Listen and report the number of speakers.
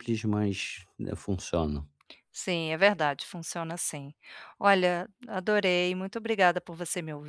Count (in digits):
2